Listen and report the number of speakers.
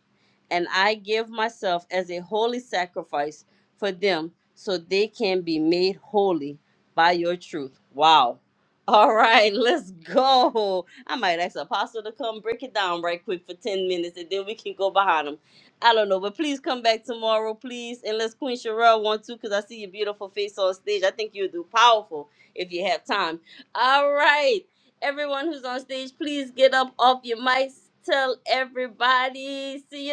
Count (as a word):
one